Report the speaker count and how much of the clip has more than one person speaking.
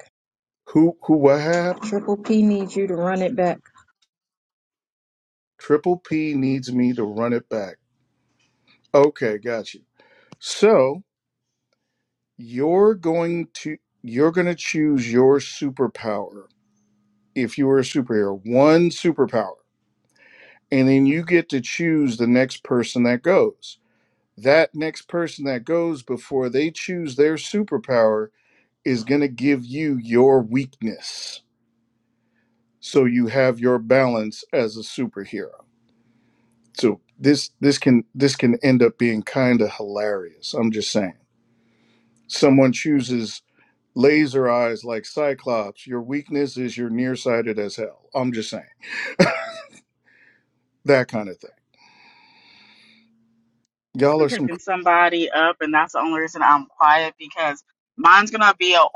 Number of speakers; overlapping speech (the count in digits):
3, about 1%